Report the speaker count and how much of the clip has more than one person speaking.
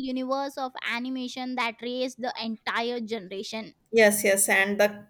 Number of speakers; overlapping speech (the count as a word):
two, no overlap